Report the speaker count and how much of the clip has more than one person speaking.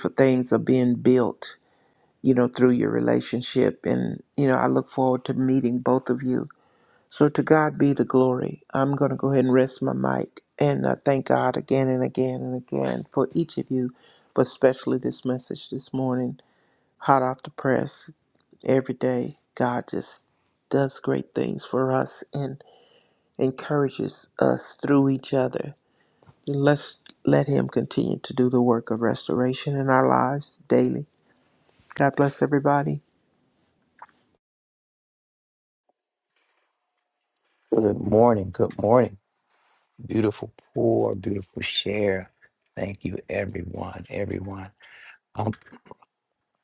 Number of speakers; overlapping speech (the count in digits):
2, no overlap